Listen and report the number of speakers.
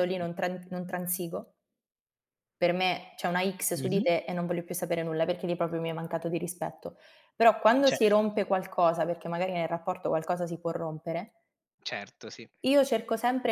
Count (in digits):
2